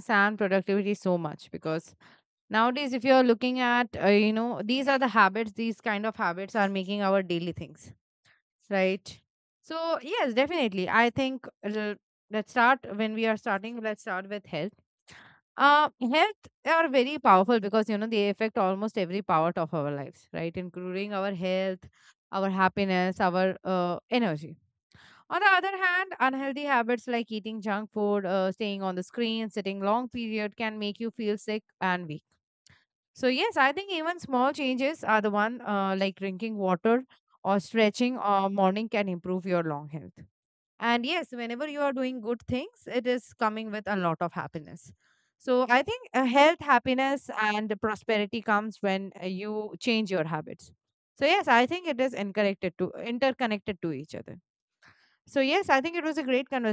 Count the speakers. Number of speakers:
1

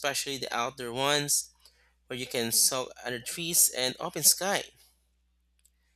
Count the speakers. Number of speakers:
1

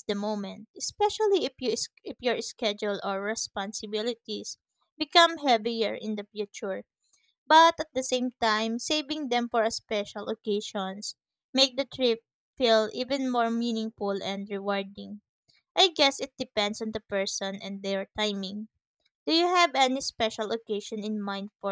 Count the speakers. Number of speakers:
1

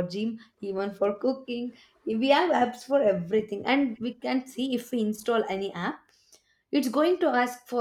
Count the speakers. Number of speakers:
1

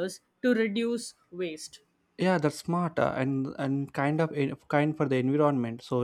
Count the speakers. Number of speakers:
2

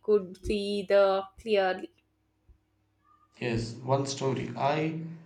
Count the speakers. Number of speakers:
2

